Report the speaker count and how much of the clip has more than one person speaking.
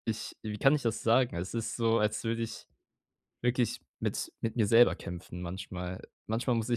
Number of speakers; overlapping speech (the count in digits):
1, no overlap